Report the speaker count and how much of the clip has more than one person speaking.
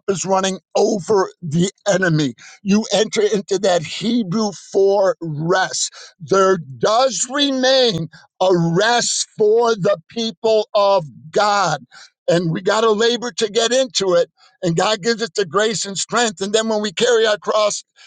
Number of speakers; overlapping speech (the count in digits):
1, no overlap